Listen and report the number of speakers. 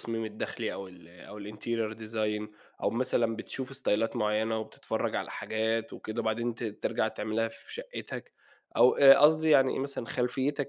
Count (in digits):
1